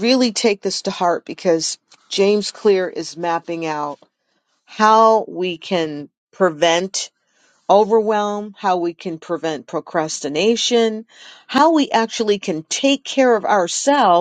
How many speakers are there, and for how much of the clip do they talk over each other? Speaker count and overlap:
1, no overlap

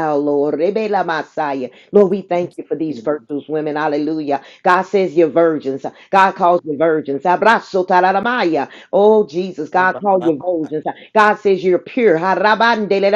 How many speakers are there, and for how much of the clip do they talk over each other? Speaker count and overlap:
1, no overlap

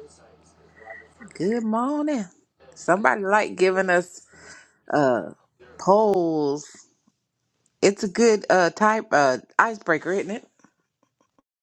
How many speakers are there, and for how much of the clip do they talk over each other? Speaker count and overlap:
1, no overlap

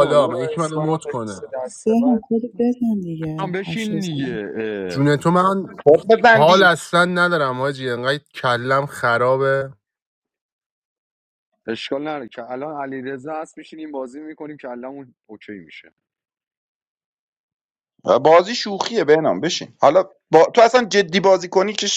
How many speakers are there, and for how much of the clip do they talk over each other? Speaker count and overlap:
4, about 14%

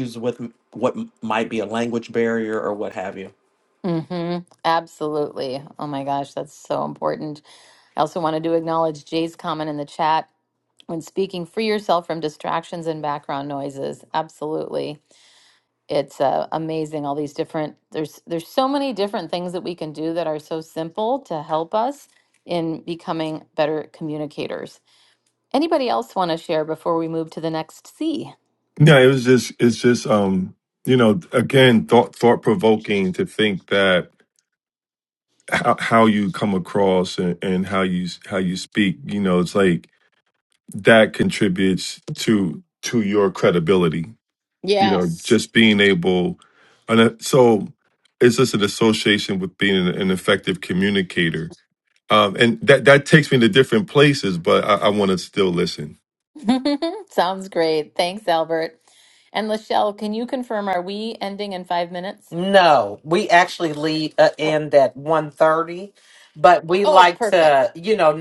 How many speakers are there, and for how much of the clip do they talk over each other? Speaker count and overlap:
4, about 1%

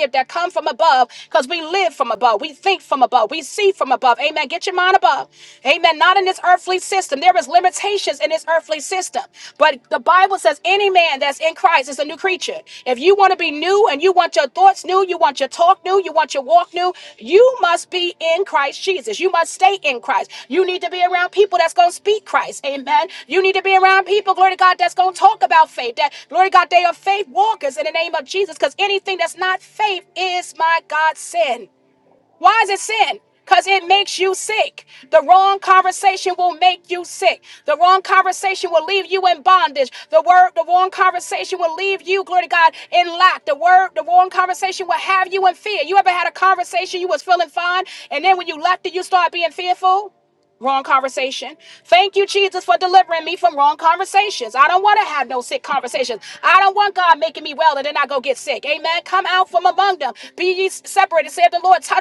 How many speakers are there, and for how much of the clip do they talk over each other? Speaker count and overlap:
1, no overlap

